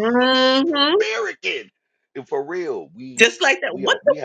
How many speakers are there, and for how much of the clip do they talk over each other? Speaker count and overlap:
2, about 14%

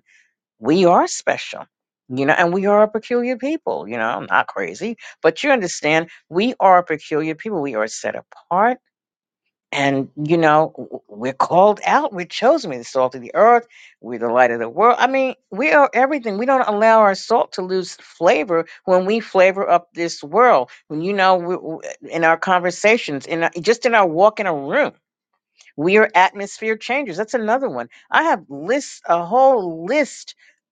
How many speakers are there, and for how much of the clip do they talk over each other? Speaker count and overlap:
1, no overlap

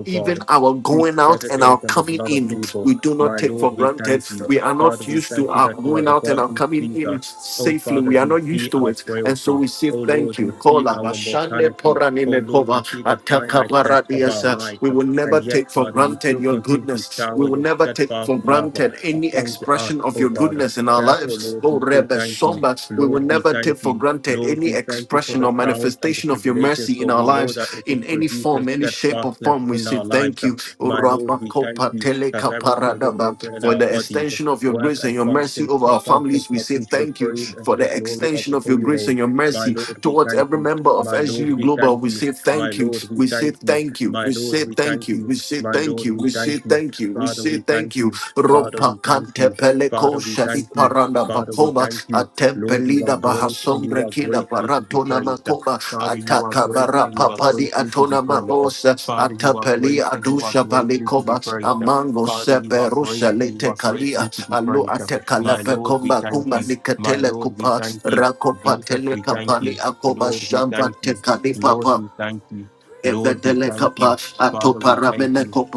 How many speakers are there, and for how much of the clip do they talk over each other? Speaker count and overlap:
2, about 87%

